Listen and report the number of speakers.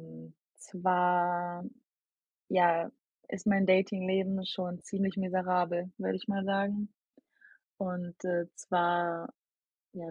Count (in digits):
1